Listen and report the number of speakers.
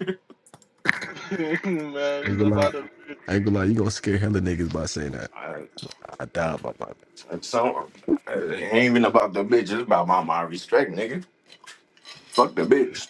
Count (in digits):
3